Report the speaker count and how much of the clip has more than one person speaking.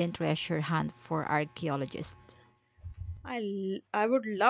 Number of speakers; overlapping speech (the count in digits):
2, no overlap